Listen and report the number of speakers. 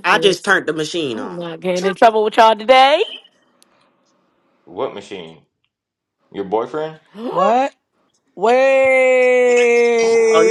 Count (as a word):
four